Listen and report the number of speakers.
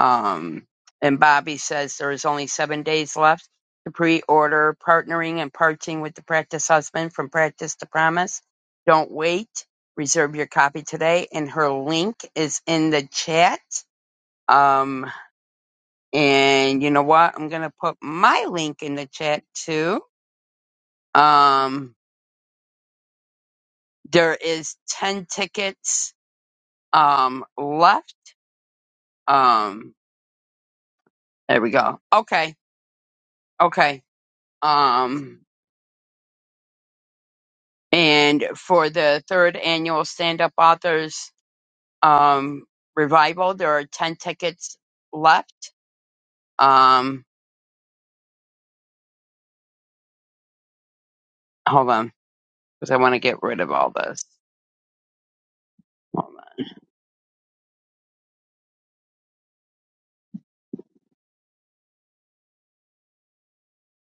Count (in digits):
1